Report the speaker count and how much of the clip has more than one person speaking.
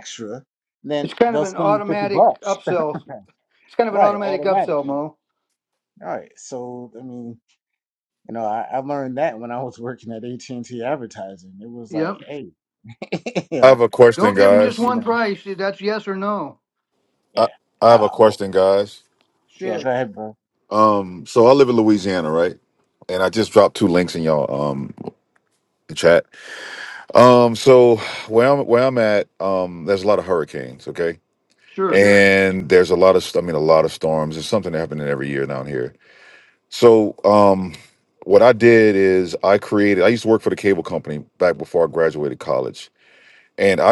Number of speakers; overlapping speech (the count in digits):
3, about 10%